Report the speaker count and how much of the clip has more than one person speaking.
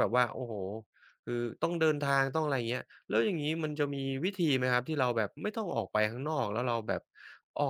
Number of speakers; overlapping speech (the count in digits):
1, no overlap